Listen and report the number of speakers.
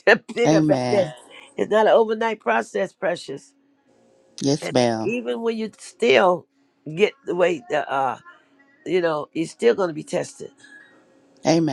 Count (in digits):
2